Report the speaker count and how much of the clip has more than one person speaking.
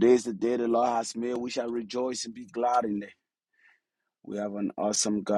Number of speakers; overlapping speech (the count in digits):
1, no overlap